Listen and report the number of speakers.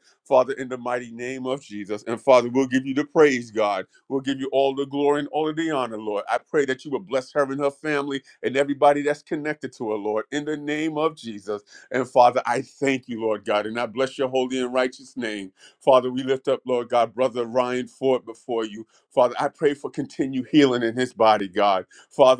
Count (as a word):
one